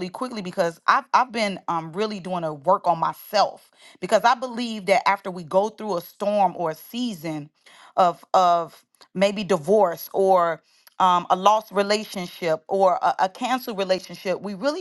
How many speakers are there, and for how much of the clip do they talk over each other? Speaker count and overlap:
1, no overlap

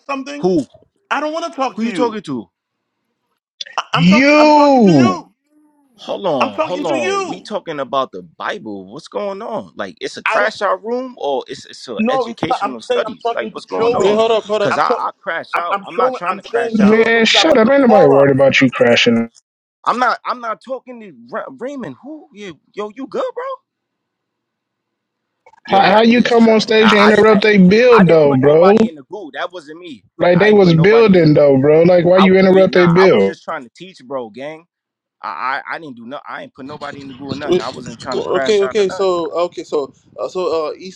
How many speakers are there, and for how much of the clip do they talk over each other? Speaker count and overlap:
4, about 35%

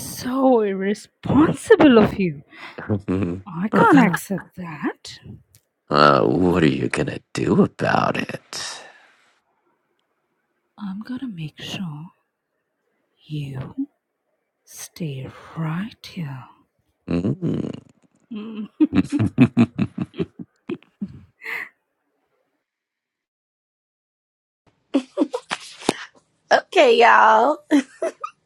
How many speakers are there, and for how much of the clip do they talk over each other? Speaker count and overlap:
3, no overlap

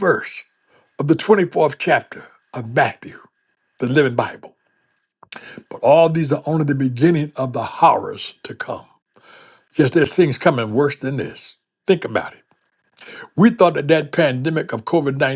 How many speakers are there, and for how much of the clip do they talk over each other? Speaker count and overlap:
1, no overlap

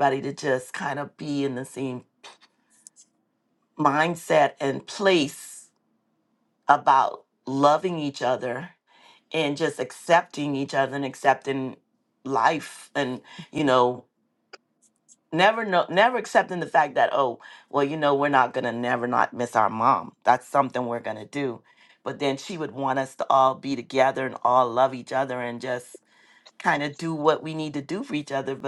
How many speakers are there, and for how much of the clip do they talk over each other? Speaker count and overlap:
1, no overlap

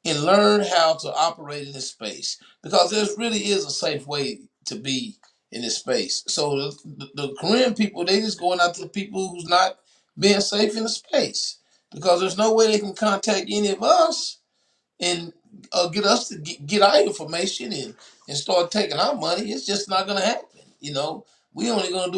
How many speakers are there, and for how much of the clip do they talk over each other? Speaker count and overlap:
1, no overlap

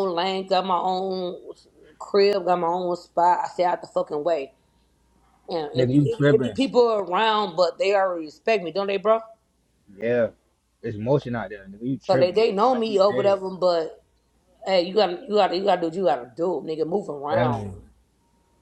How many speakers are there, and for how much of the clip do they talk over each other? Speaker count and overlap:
2, about 11%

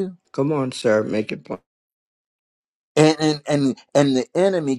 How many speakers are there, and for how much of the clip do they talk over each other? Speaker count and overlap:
2, no overlap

